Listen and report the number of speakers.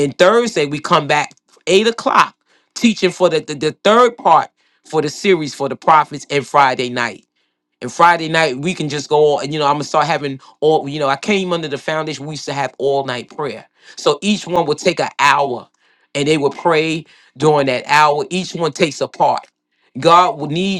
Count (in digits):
1